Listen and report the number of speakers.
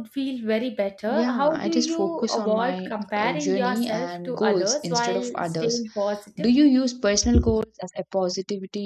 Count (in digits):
2